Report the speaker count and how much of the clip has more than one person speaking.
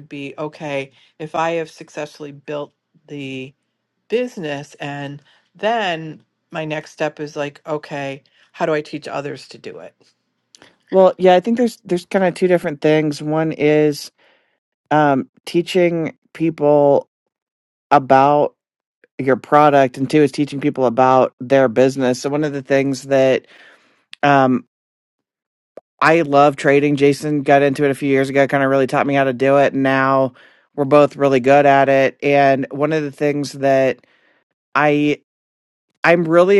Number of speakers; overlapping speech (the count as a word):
two, no overlap